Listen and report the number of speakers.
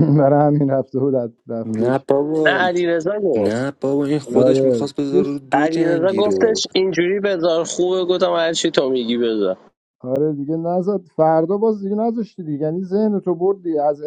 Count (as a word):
three